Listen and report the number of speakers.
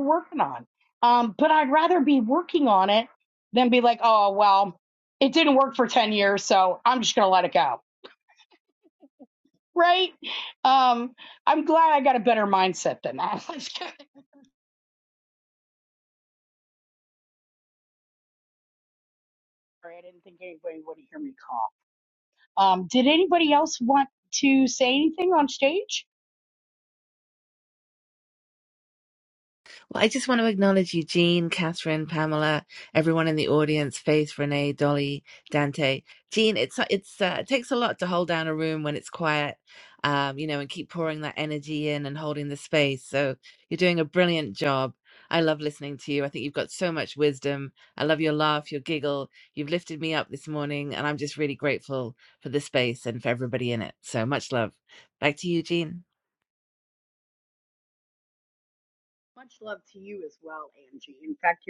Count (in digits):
2